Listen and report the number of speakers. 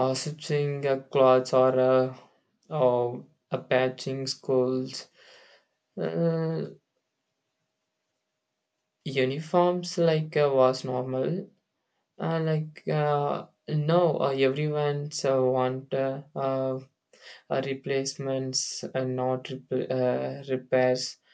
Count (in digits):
1